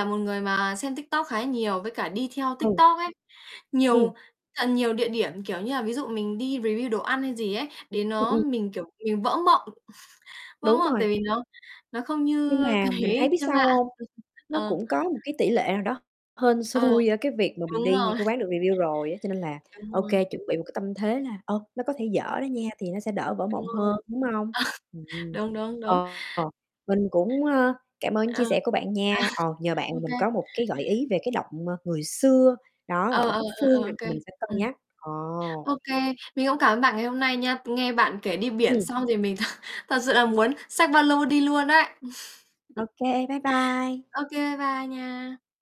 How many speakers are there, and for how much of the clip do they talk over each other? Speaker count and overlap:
2, about 14%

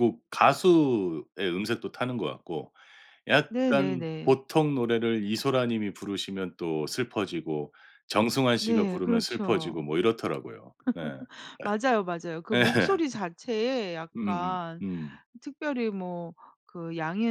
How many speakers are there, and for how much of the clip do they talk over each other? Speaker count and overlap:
2, about 16%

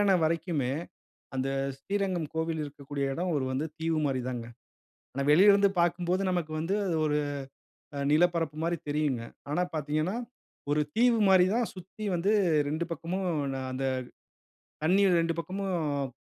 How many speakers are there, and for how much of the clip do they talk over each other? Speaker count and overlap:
1, no overlap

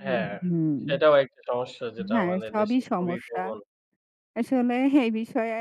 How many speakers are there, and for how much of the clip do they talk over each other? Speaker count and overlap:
2, about 30%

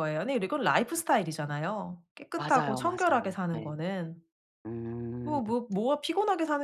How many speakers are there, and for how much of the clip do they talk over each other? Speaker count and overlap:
2, about 23%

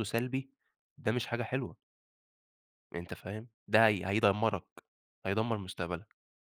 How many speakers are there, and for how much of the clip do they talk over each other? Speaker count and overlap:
1, no overlap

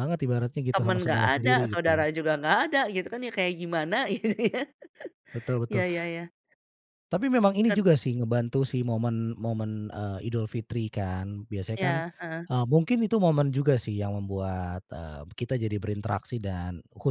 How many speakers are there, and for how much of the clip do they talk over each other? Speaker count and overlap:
2, about 11%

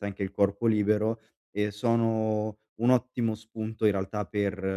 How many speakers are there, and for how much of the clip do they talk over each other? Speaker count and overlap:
1, no overlap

